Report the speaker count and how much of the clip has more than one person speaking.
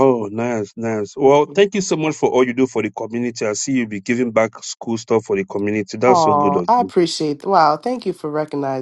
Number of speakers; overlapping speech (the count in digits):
2, about 13%